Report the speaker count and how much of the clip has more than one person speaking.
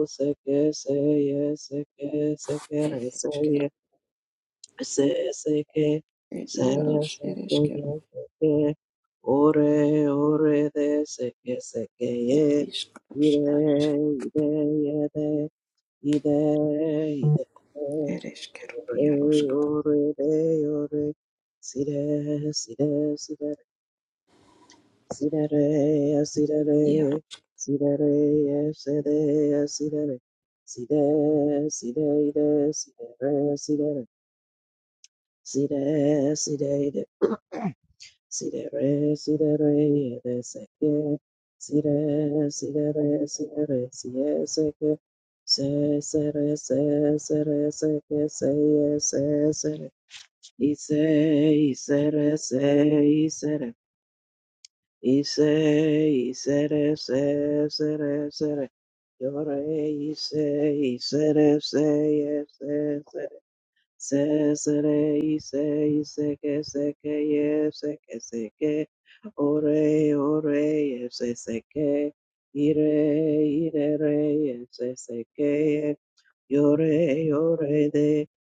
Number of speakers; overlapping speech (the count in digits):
2, about 4%